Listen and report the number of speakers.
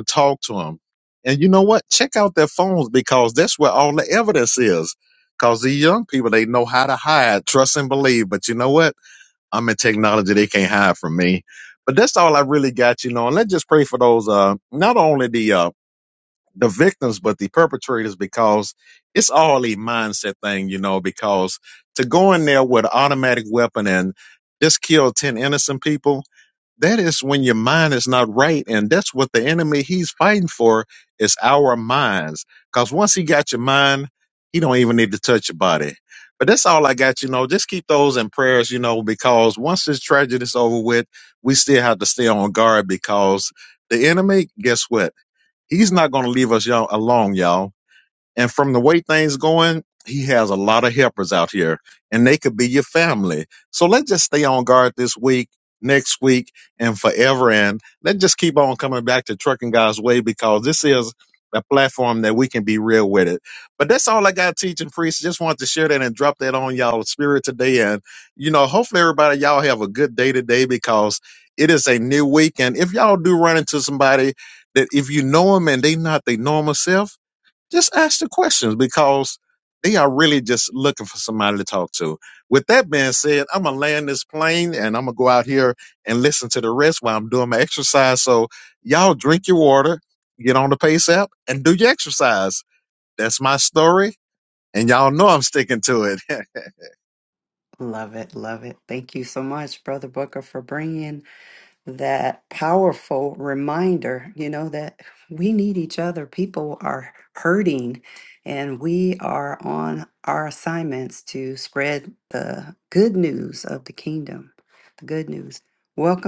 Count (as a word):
two